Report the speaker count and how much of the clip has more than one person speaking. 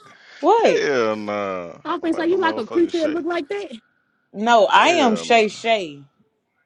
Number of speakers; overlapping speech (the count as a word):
three, about 34%